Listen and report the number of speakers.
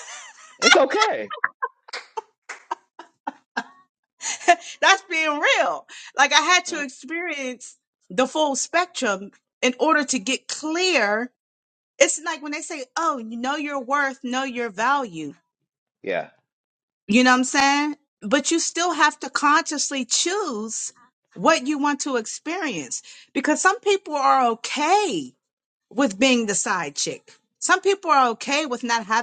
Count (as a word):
two